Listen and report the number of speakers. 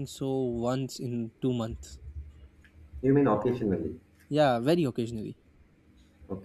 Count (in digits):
2